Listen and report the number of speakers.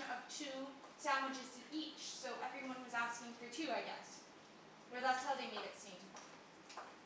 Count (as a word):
one